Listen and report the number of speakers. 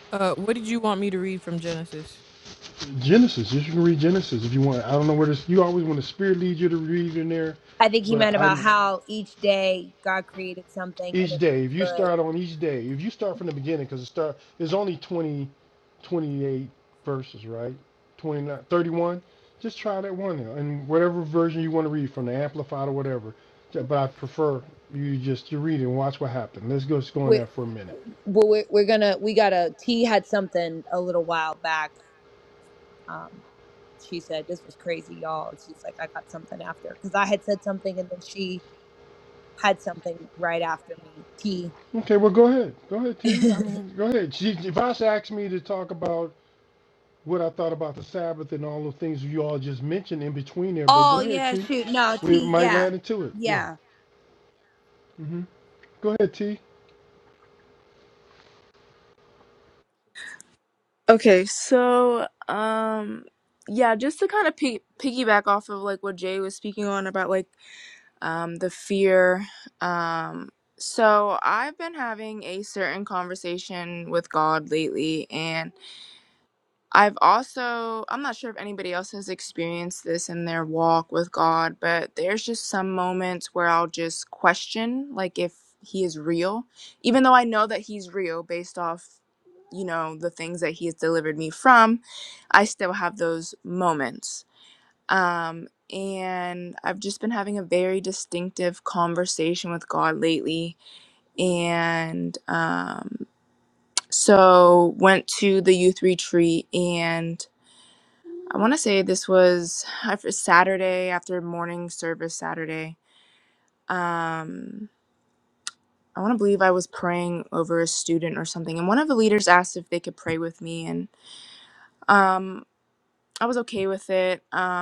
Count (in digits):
4